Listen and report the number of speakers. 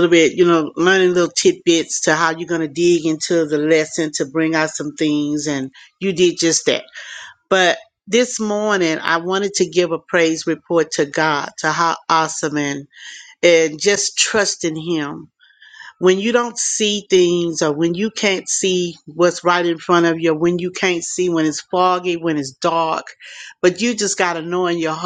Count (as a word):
one